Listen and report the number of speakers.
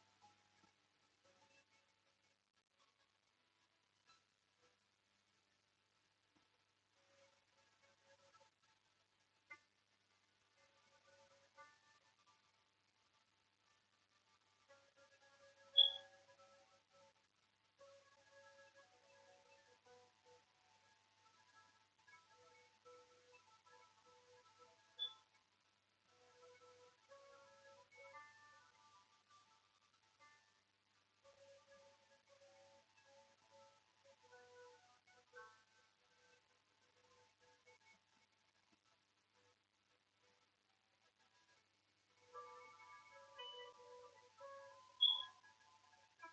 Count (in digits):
0